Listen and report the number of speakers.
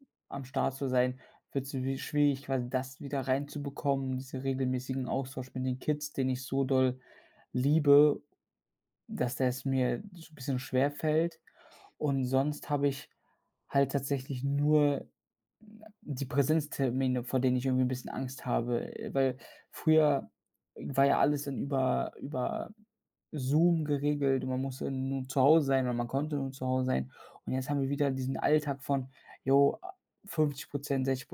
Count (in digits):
1